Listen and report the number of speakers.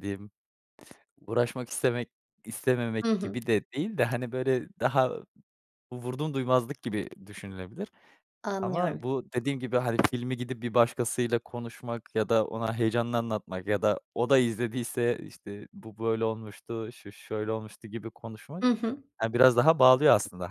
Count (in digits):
2